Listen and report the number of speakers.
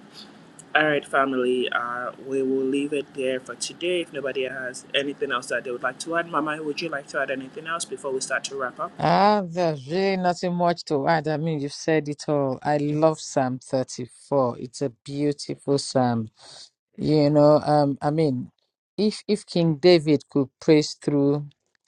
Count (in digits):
2